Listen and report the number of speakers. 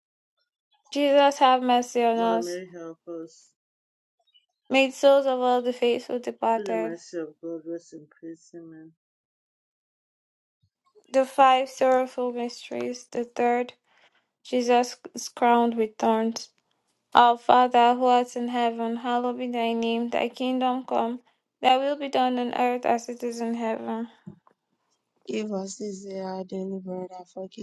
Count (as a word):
three